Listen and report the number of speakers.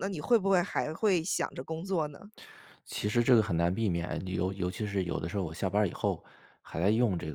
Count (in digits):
2